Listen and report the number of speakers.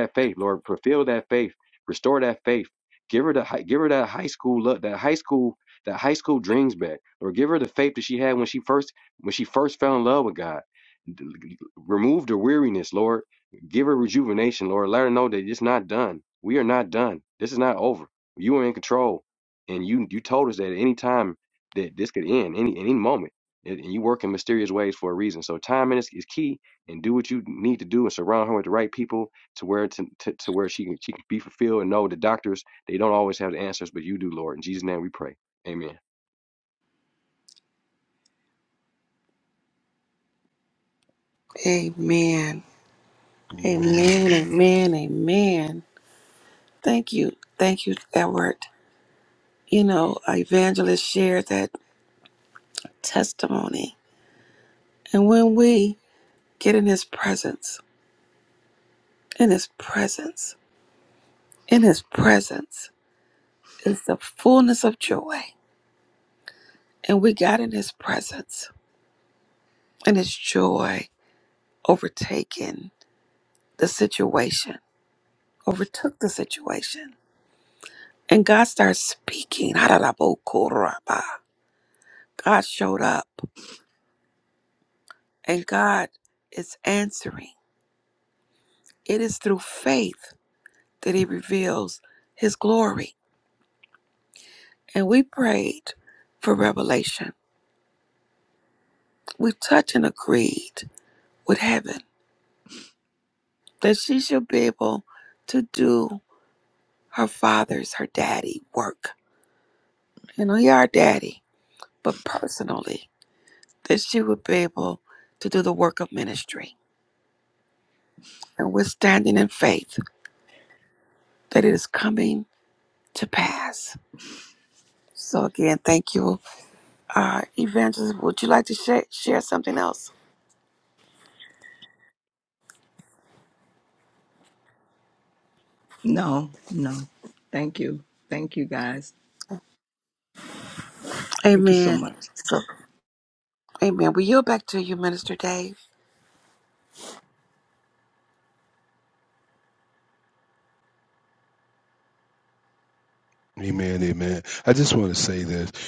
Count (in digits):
4